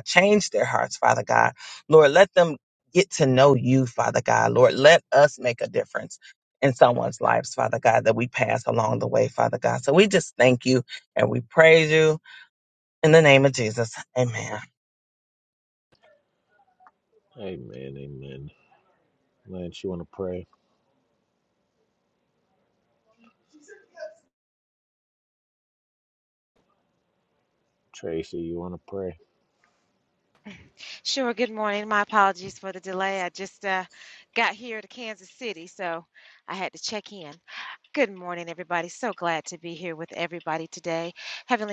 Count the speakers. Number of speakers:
3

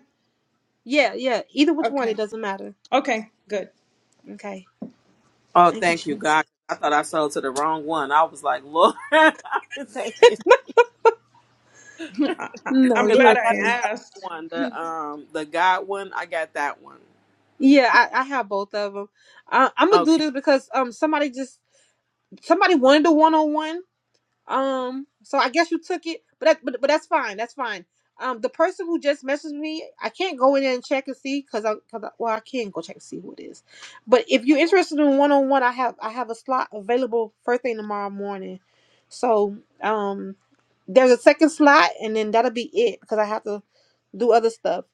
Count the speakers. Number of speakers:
3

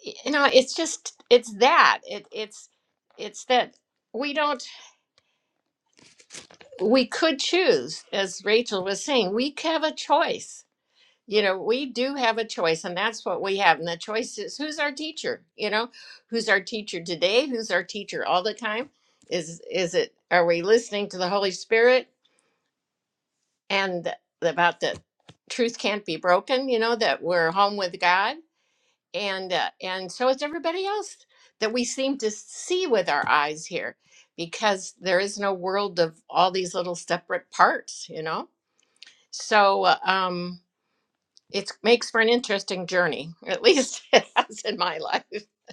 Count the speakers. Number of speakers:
1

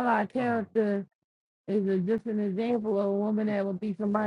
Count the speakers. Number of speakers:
1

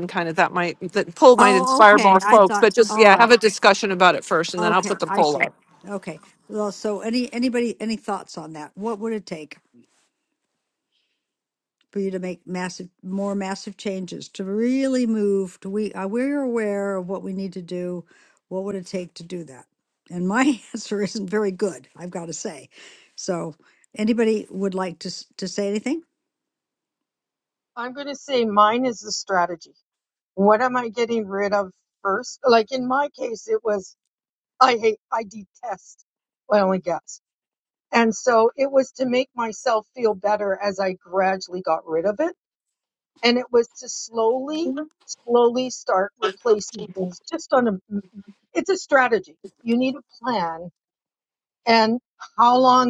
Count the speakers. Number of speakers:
3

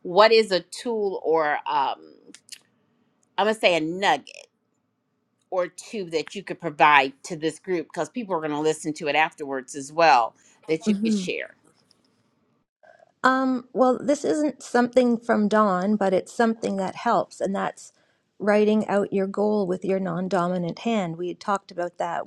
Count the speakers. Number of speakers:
2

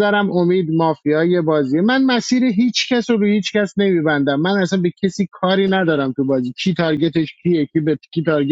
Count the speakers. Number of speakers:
1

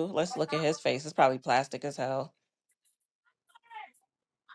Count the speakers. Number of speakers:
1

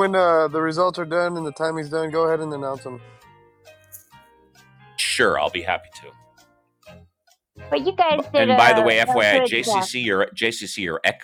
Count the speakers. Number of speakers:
3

